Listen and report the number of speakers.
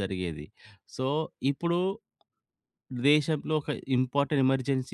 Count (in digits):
1